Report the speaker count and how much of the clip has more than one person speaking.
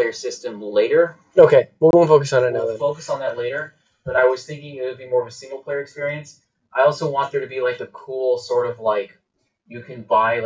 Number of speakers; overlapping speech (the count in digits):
2, about 4%